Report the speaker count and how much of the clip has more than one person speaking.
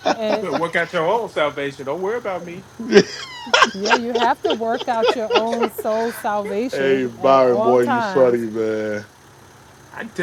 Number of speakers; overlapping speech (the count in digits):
3, about 18%